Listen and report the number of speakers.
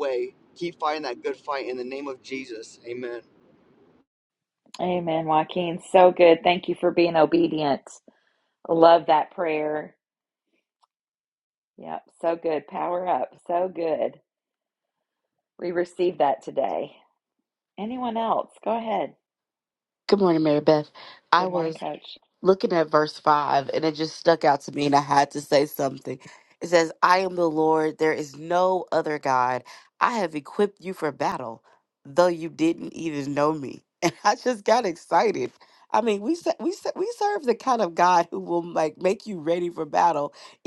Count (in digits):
3